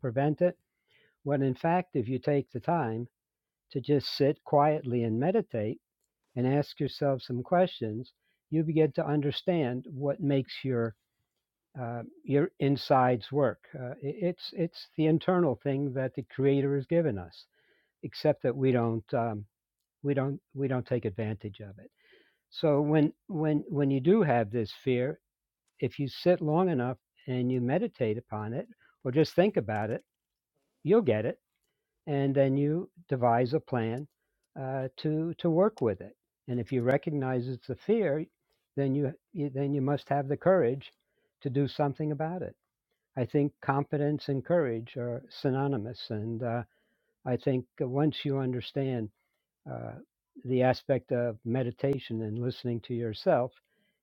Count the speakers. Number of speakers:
1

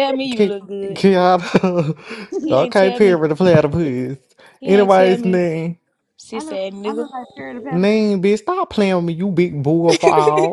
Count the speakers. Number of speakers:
3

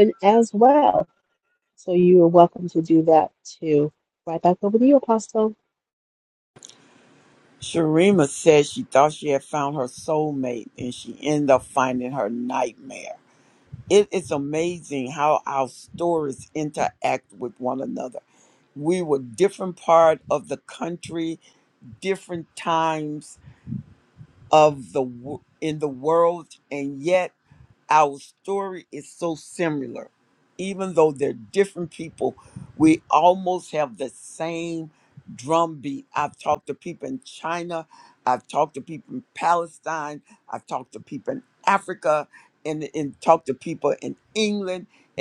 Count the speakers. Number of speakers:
2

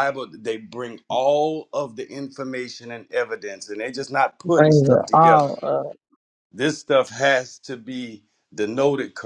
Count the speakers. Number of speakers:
2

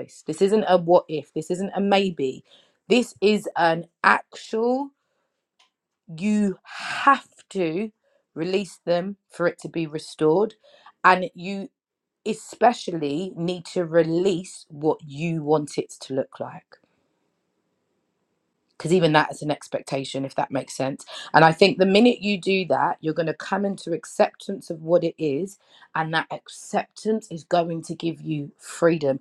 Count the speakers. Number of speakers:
1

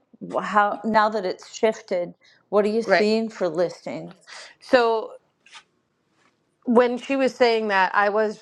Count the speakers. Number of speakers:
2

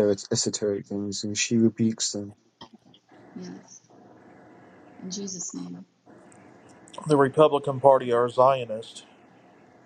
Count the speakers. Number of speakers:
3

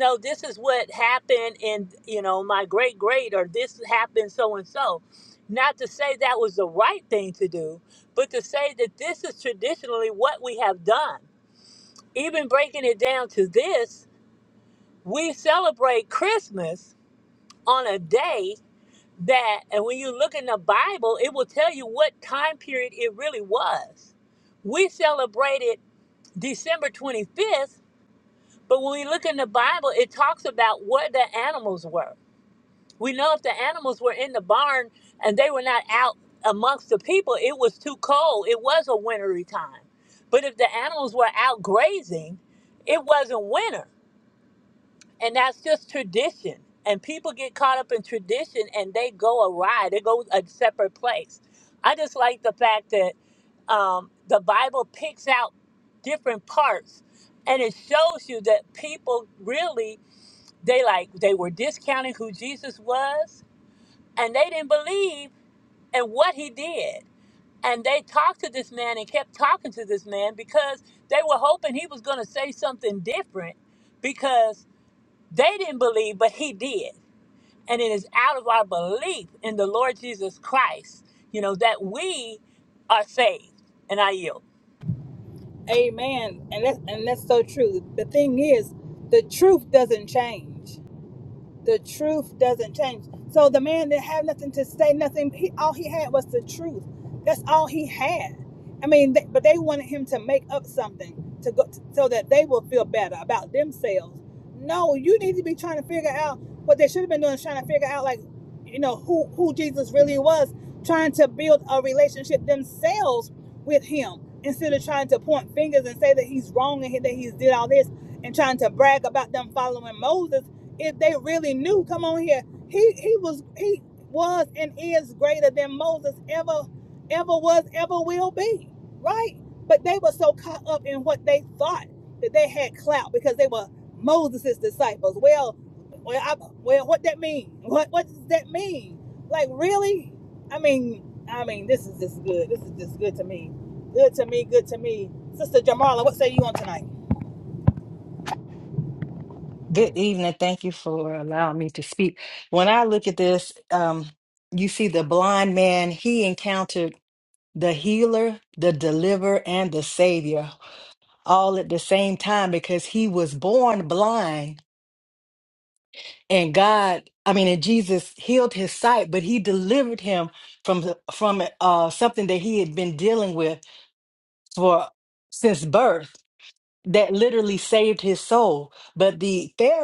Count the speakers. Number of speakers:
3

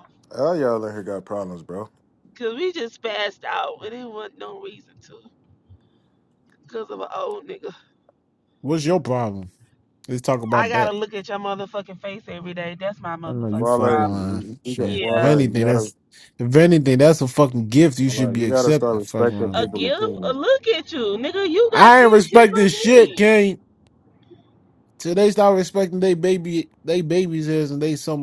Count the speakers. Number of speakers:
3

